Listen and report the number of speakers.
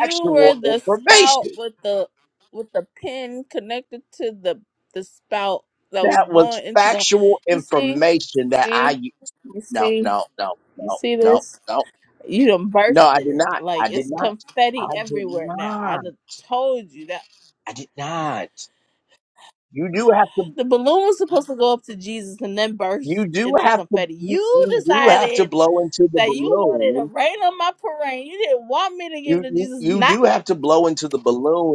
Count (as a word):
two